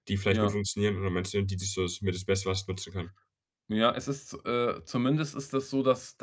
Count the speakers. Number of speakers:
2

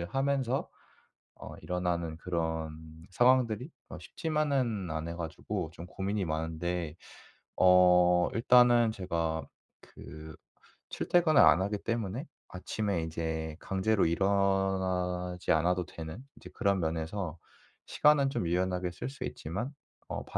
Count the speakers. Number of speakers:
1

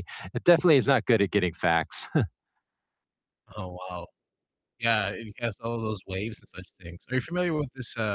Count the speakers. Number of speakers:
2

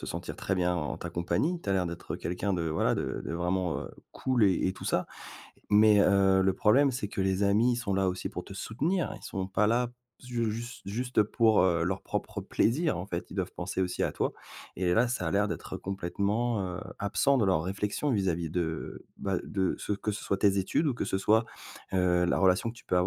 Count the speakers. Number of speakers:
1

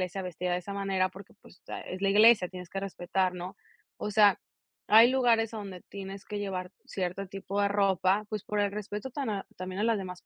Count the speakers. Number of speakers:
1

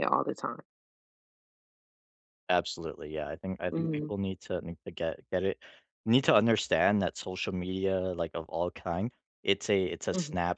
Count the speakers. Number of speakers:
2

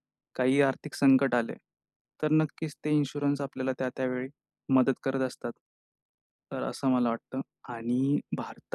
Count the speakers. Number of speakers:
1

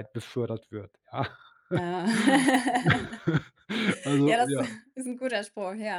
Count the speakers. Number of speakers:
2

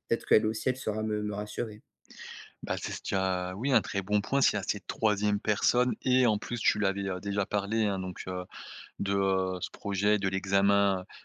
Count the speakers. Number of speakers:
2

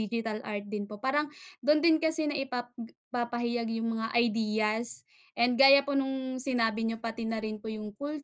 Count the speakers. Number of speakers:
1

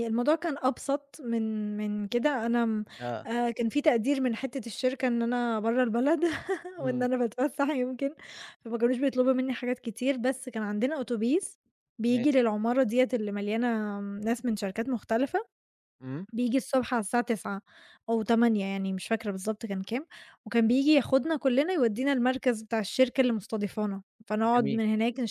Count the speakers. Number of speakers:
2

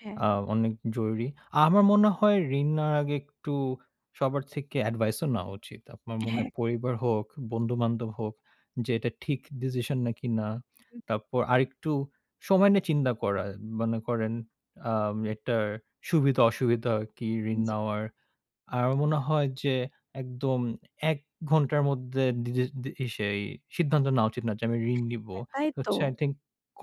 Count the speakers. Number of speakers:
2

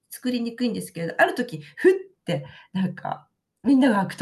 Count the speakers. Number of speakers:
1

